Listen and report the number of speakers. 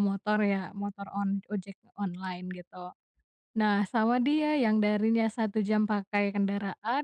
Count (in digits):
1